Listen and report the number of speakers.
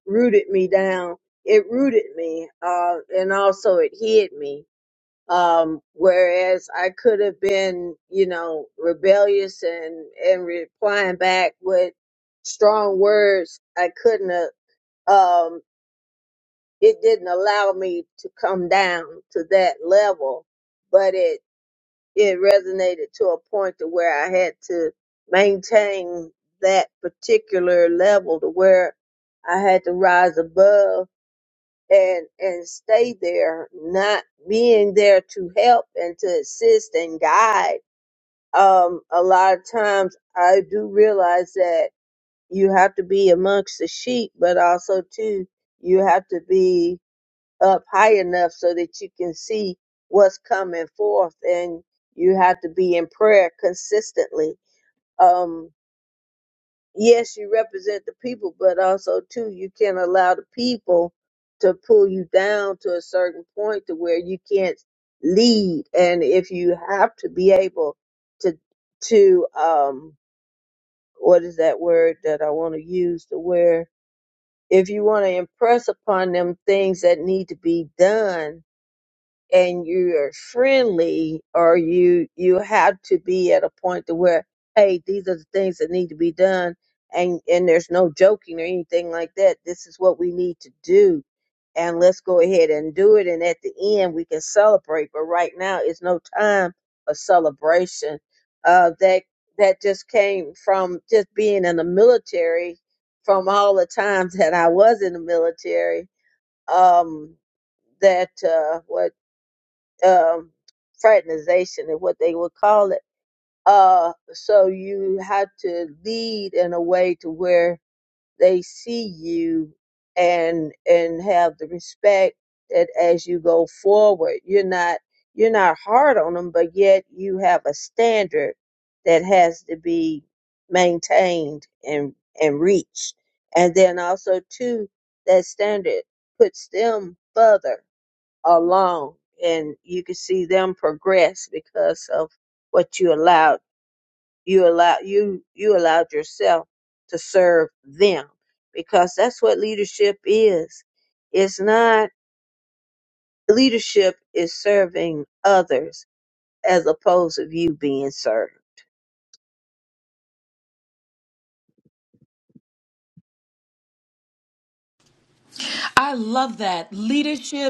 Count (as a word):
two